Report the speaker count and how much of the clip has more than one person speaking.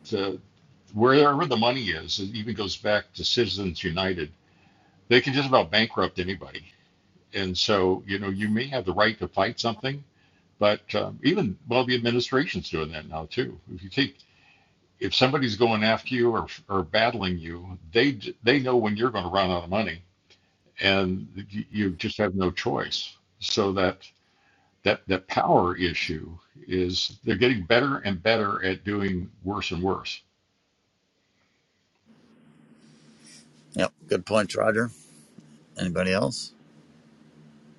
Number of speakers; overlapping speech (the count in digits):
2, no overlap